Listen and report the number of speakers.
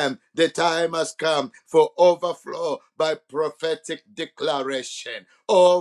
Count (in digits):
1